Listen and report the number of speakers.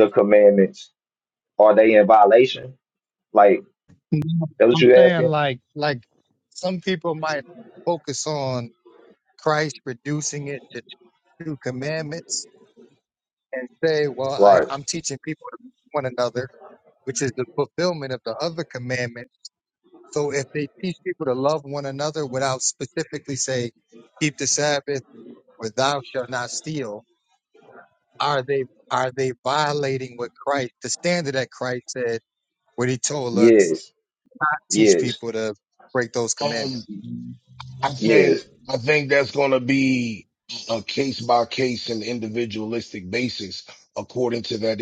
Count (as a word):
three